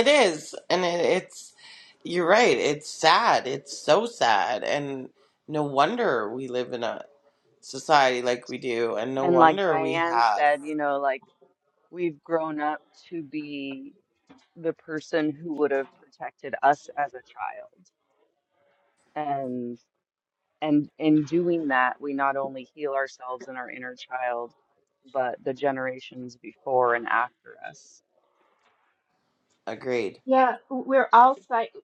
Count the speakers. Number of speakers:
three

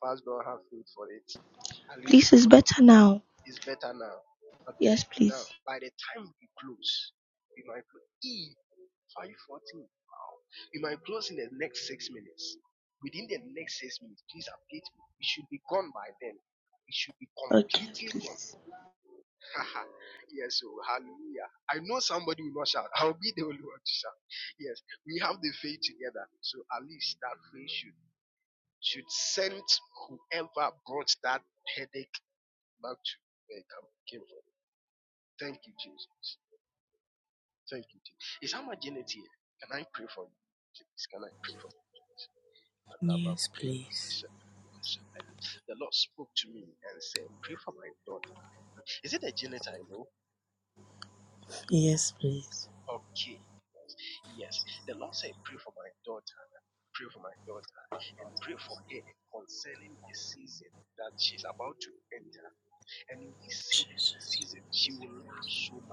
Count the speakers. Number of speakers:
three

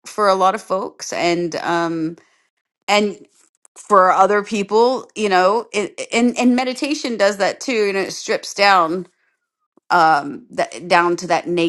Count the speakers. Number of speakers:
one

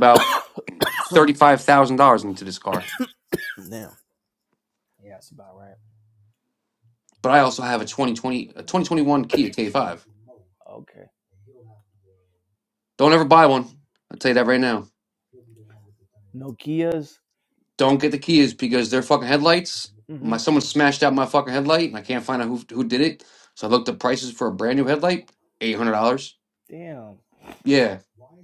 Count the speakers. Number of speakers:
two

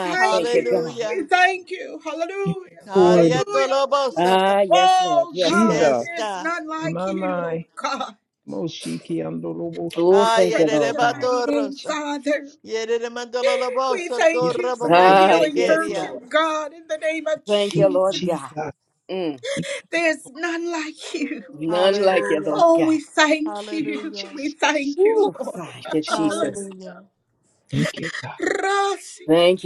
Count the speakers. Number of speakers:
four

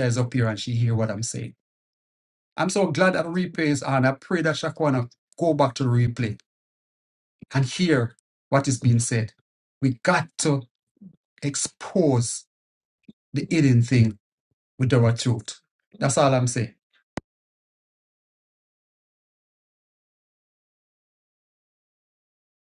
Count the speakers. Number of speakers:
one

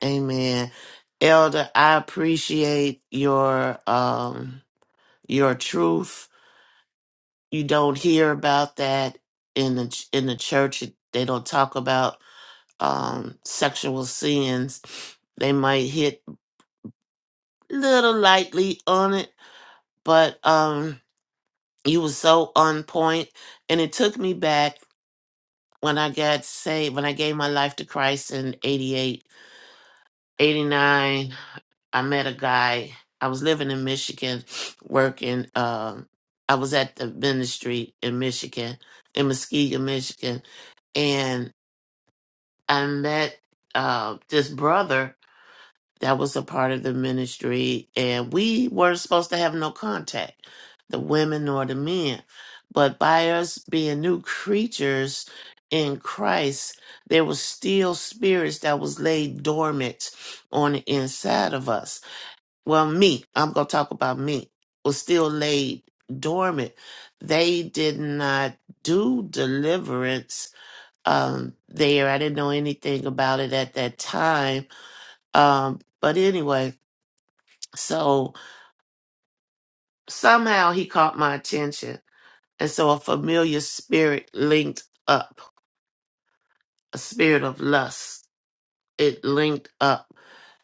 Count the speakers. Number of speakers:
one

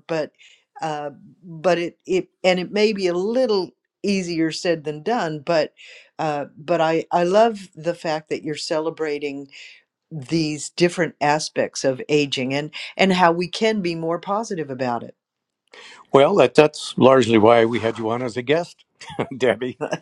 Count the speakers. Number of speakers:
two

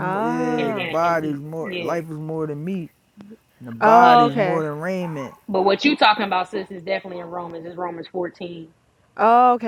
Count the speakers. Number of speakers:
three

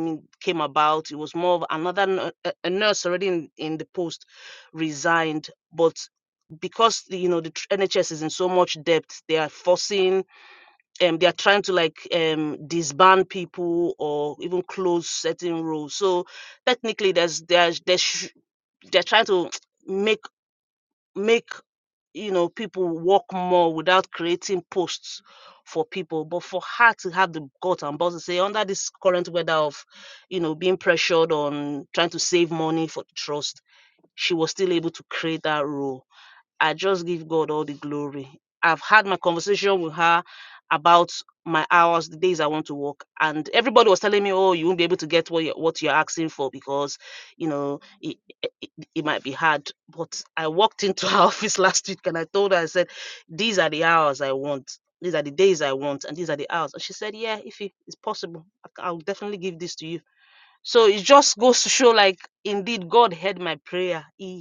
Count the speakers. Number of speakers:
one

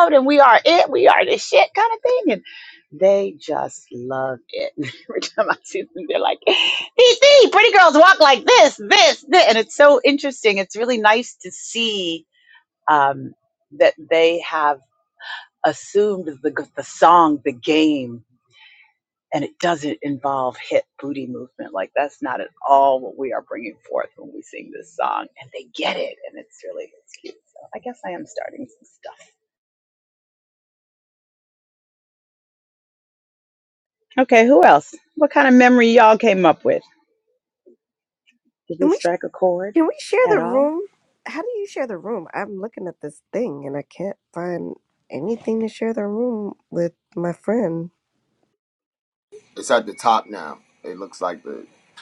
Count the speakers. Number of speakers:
three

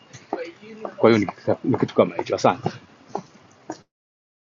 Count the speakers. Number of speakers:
one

